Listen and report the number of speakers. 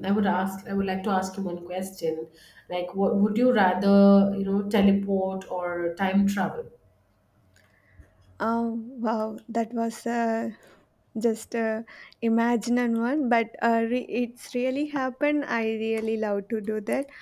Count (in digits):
2